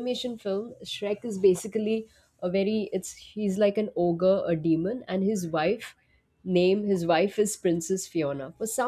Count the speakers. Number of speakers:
1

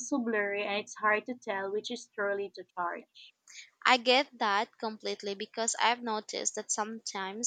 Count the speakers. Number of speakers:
2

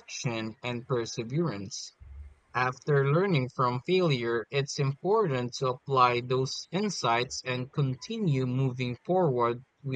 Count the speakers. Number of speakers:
1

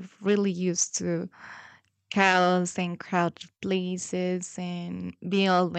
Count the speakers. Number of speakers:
1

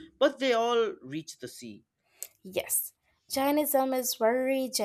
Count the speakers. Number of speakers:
2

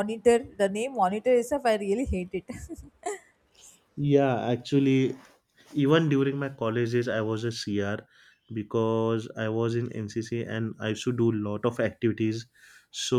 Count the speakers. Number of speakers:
2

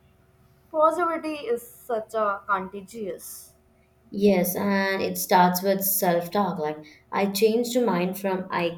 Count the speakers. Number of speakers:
2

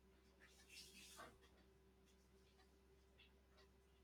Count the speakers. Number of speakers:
0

